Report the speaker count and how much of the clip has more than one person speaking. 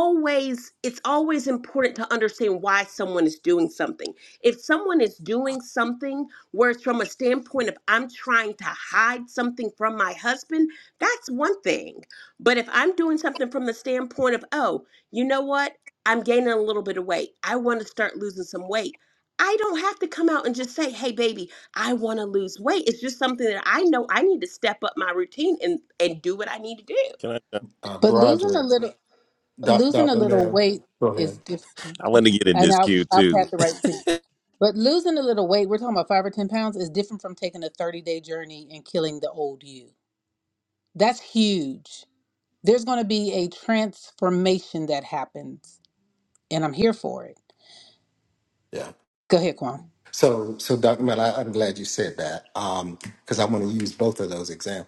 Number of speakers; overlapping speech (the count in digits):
4, about 5%